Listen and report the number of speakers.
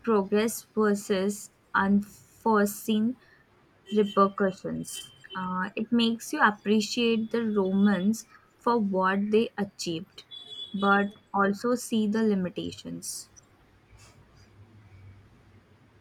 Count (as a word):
one